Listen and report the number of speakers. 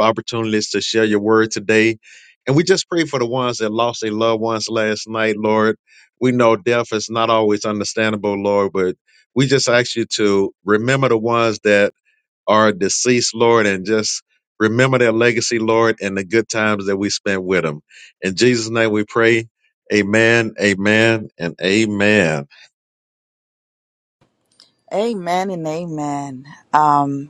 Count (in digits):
2